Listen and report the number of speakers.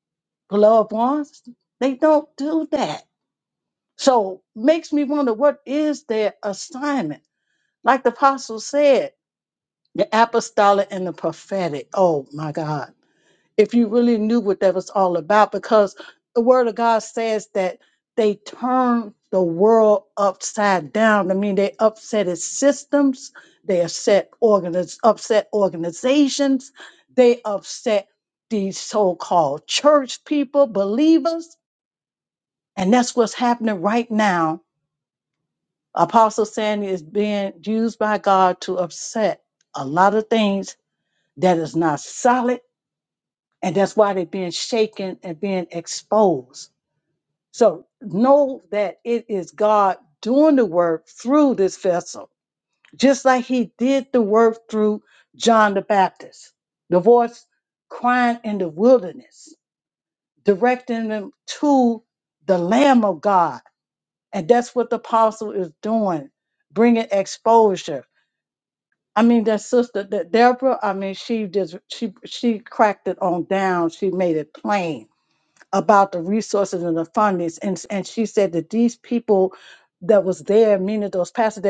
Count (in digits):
1